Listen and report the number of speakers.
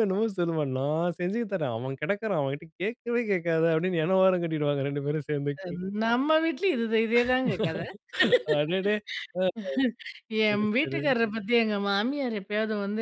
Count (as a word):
two